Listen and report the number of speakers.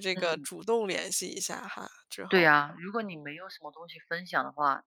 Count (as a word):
two